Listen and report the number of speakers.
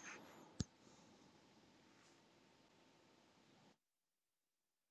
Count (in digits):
0